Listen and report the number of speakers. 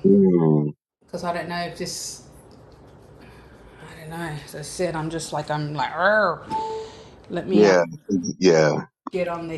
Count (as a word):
two